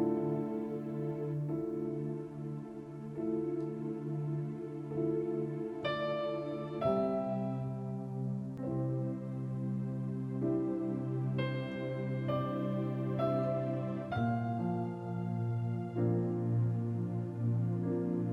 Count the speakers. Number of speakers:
0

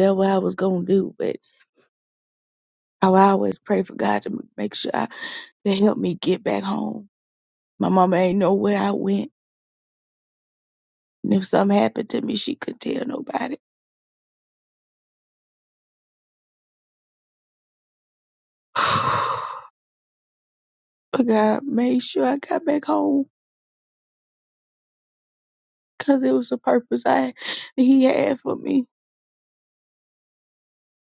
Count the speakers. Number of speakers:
1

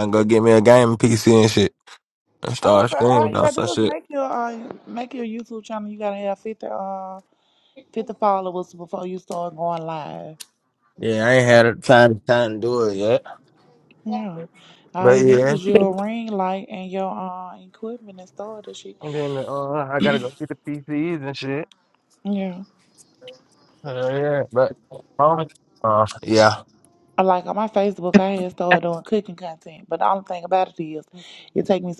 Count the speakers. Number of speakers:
2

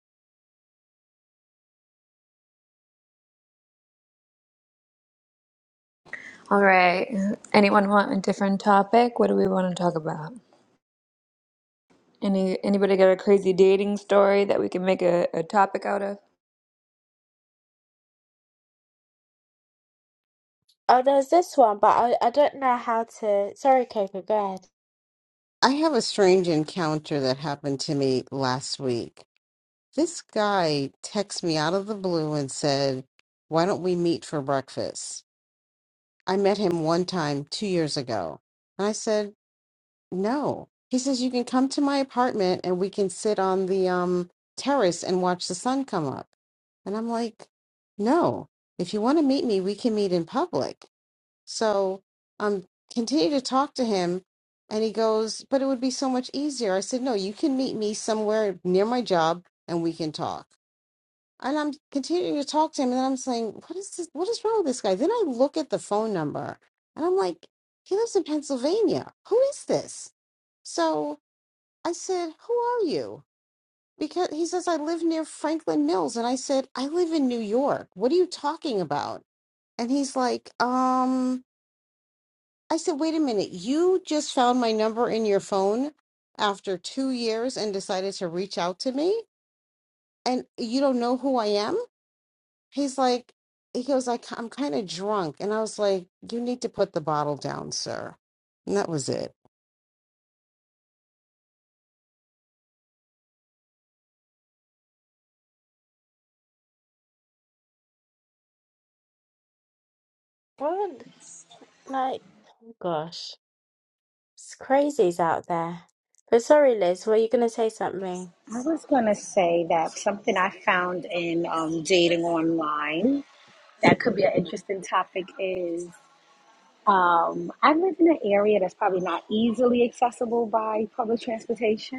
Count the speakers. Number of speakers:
4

